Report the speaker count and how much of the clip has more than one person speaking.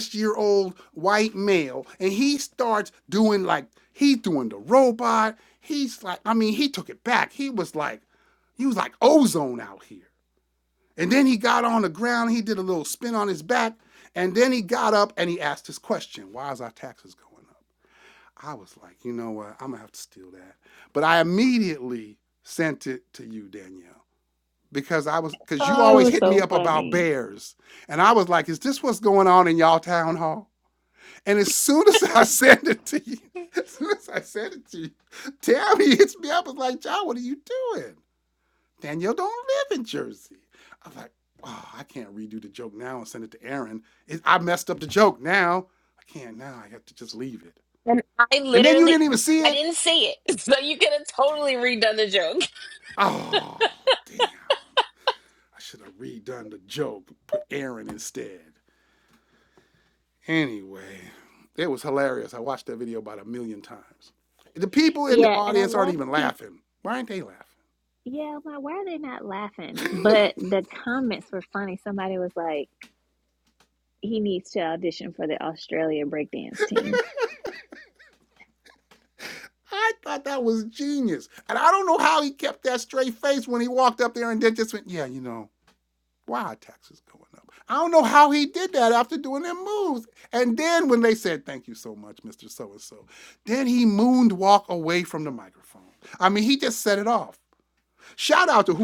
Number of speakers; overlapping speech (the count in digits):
3, about 4%